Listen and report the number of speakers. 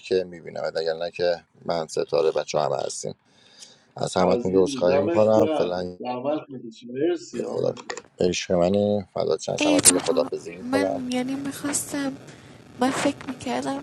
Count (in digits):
3